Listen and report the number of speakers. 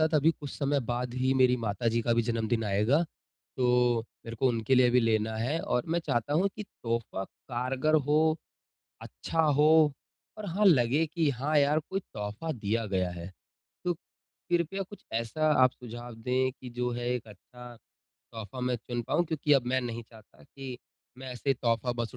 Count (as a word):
one